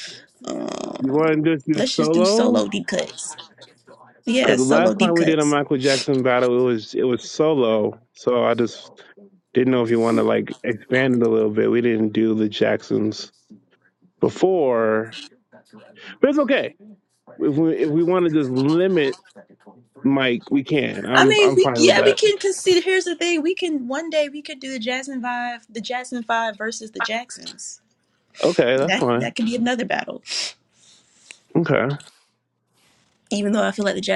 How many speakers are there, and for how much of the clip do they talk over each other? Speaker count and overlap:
2, about 10%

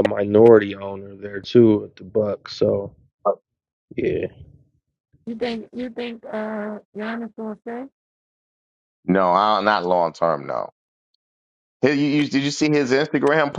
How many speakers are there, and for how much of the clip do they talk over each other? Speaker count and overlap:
3, no overlap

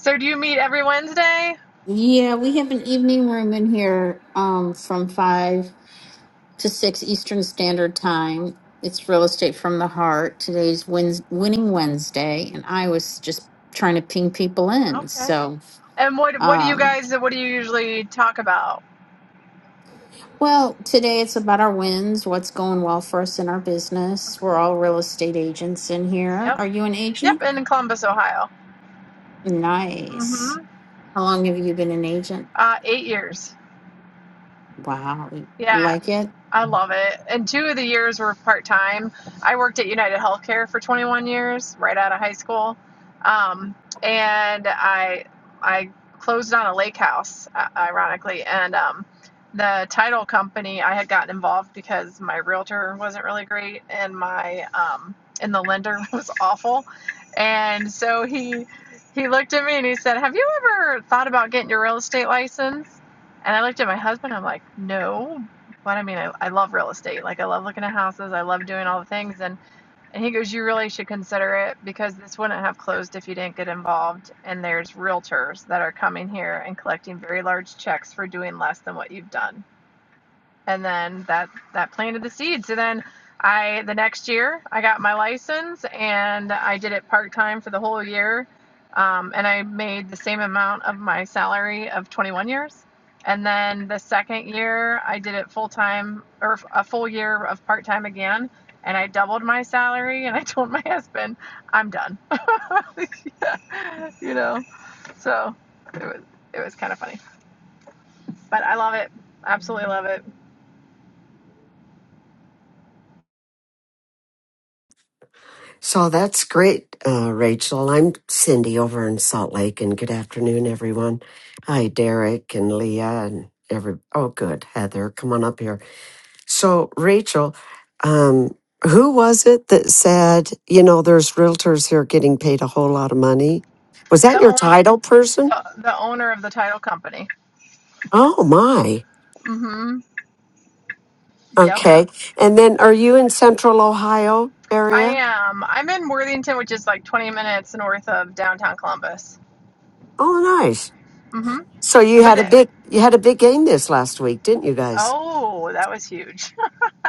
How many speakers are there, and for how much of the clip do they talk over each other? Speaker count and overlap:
3, about 2%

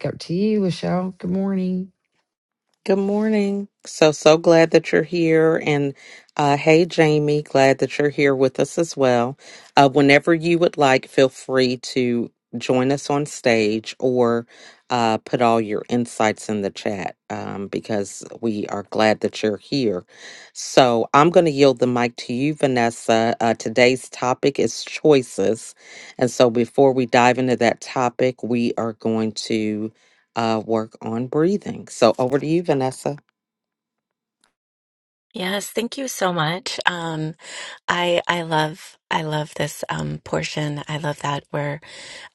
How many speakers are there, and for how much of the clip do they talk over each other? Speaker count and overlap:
3, no overlap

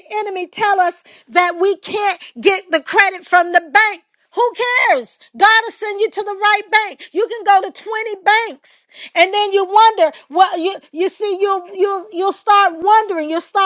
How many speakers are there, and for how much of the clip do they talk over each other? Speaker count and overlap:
1, no overlap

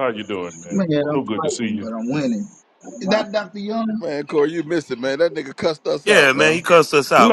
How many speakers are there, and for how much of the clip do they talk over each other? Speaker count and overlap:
4, about 20%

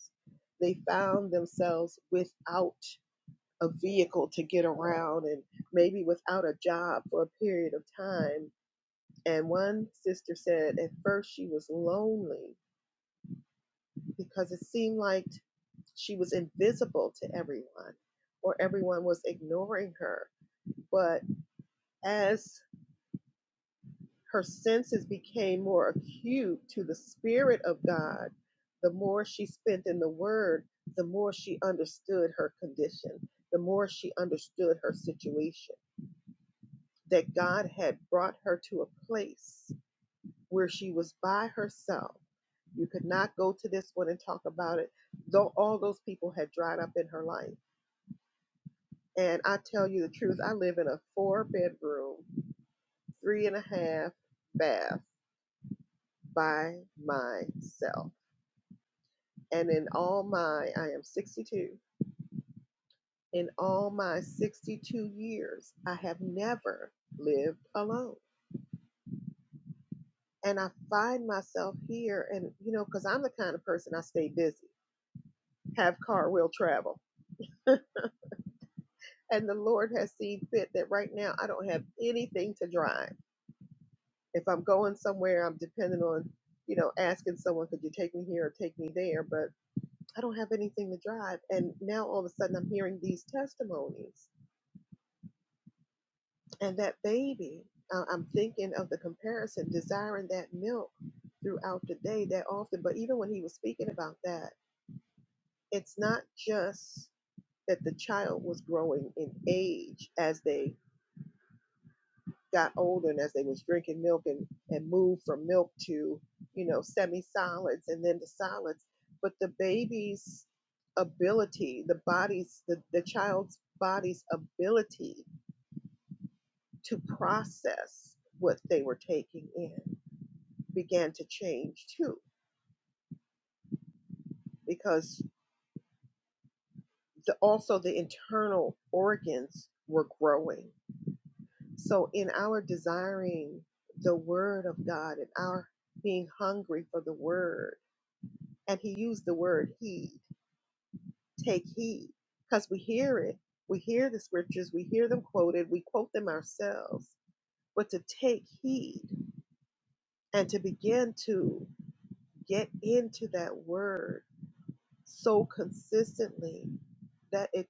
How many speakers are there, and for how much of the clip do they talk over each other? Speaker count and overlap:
1, no overlap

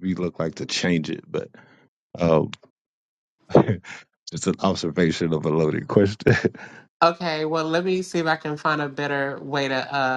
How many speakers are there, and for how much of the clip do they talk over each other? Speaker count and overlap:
2, no overlap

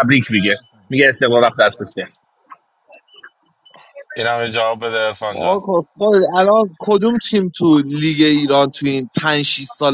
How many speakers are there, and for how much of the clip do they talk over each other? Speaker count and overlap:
3, about 3%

